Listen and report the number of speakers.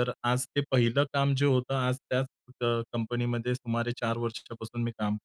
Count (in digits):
1